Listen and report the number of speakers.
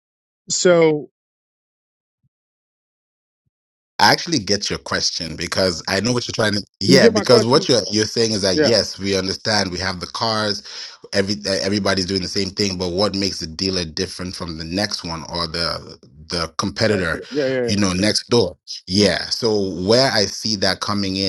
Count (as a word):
two